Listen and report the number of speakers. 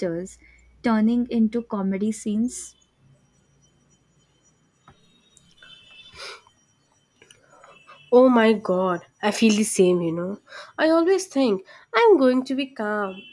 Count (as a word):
two